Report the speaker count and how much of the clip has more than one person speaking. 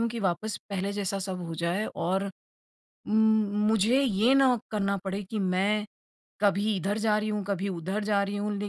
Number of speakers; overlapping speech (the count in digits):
1, no overlap